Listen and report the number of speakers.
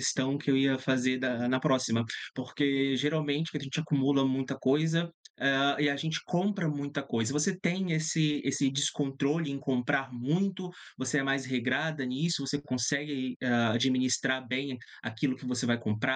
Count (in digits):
1